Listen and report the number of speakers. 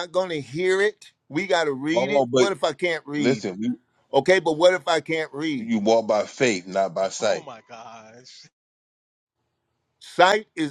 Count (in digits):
3